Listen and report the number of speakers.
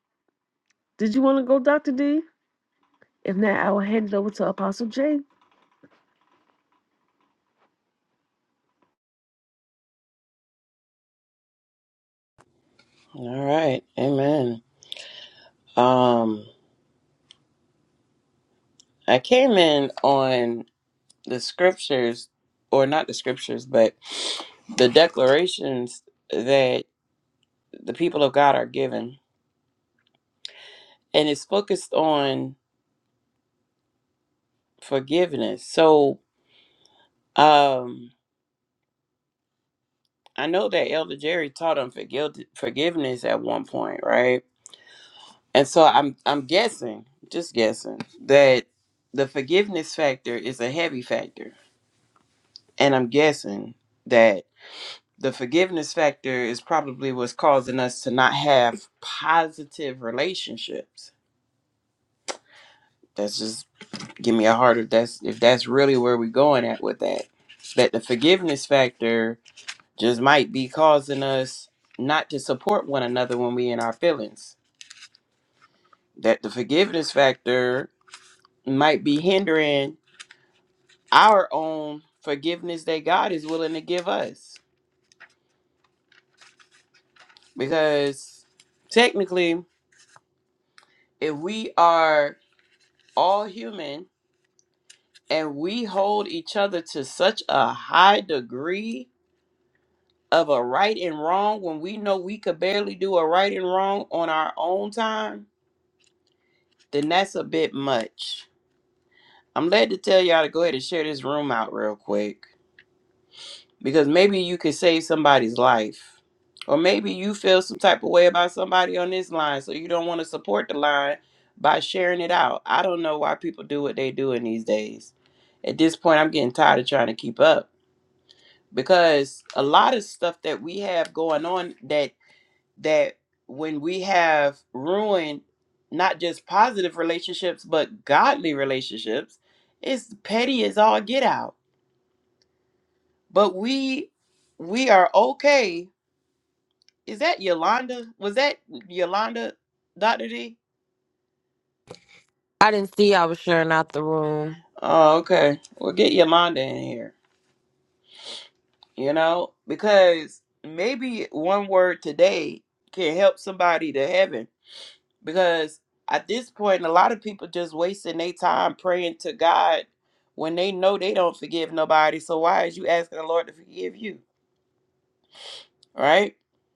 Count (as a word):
three